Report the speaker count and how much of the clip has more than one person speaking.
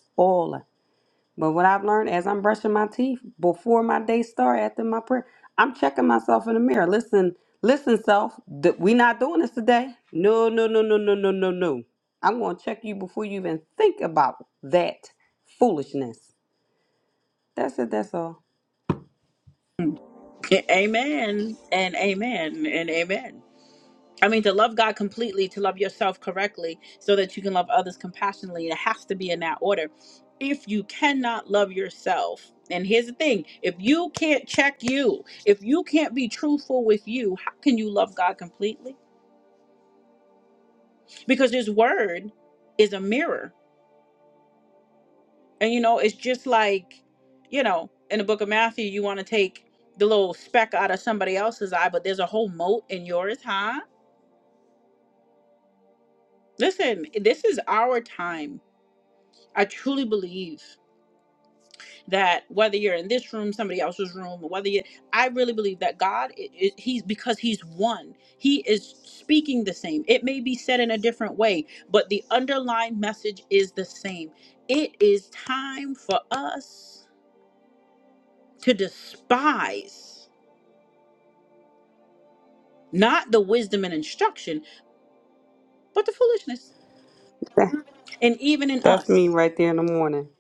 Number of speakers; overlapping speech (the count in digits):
2, under 1%